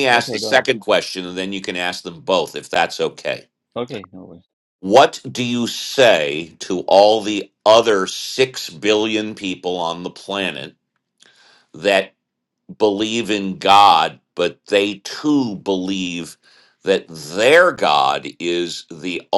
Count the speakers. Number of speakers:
2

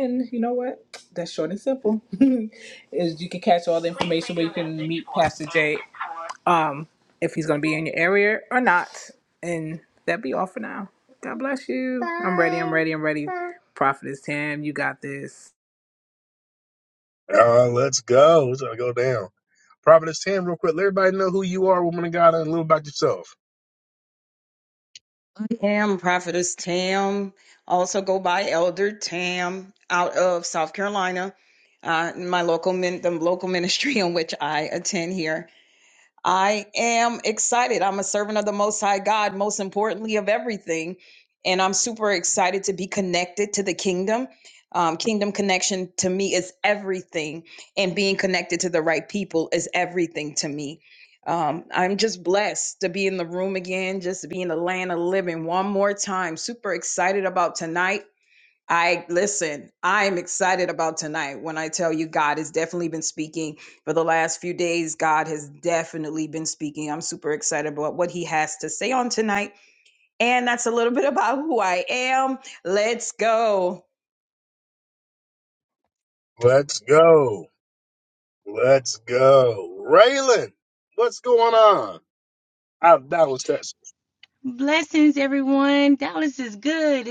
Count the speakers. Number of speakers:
4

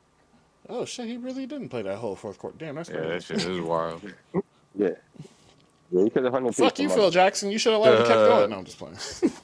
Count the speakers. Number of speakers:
3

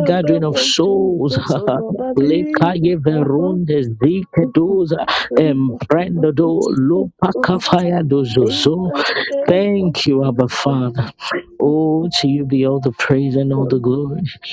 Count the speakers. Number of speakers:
2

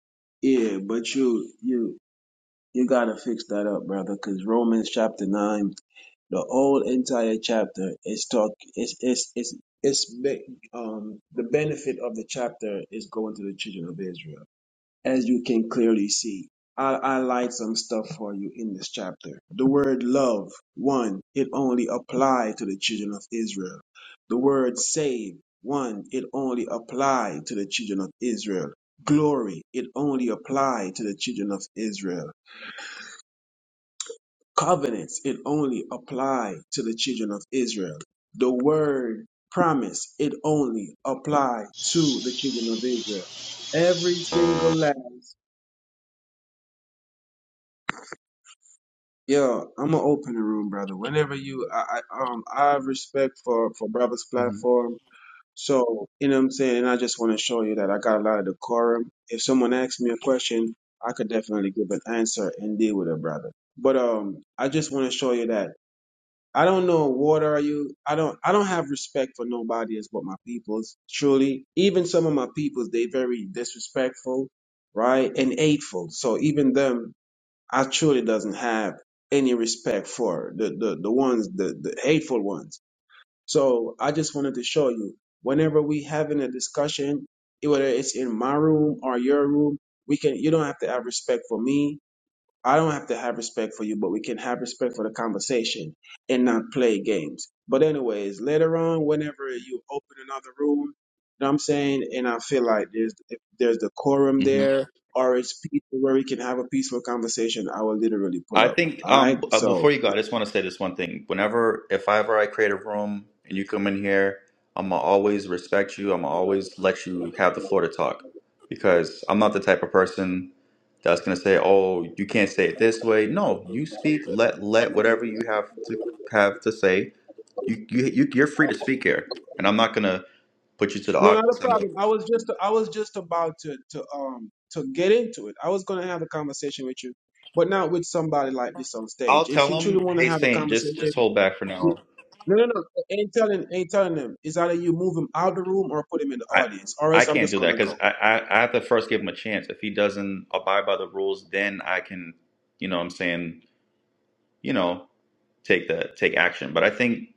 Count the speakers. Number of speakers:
2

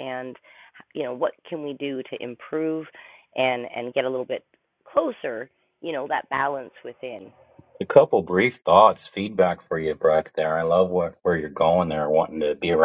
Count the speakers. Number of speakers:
2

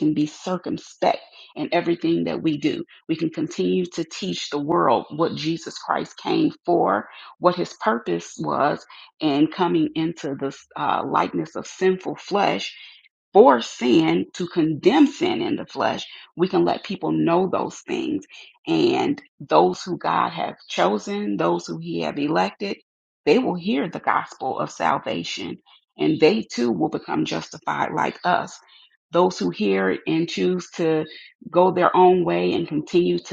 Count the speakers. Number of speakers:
1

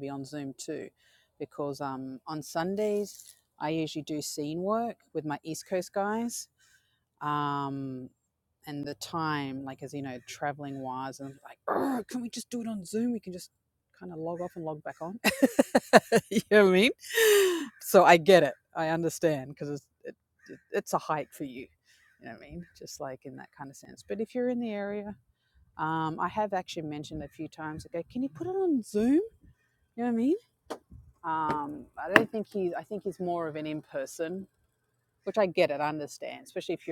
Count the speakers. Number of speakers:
1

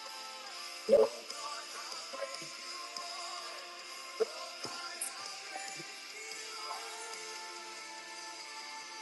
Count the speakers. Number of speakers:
0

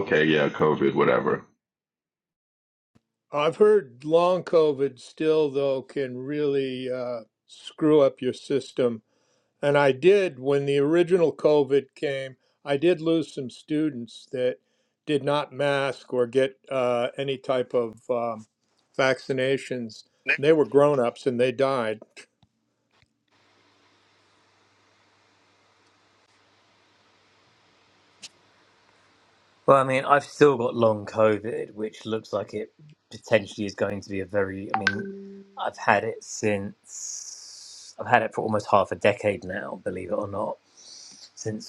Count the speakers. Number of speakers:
3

